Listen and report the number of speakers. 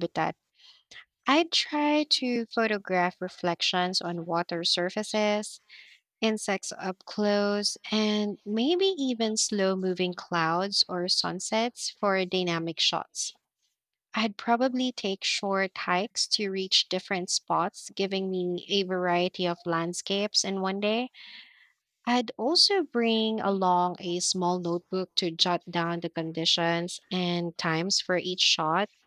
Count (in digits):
1